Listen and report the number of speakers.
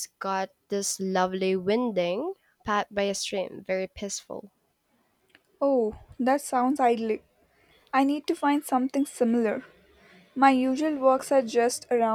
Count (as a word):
two